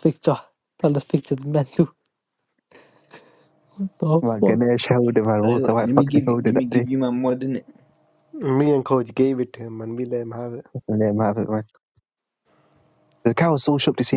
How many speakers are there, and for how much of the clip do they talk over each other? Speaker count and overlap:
four, about 13%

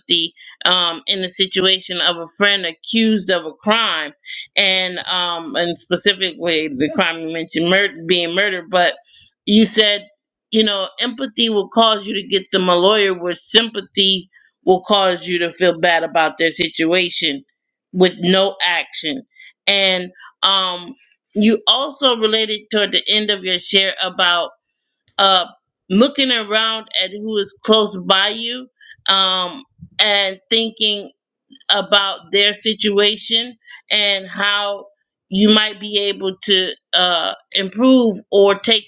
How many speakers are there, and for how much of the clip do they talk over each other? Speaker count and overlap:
one, no overlap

